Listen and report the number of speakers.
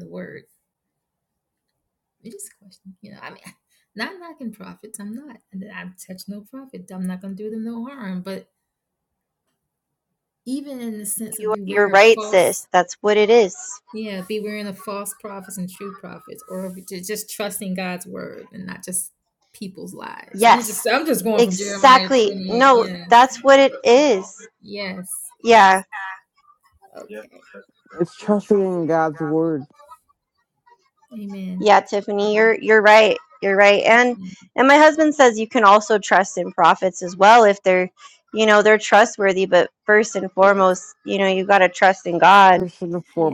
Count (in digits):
3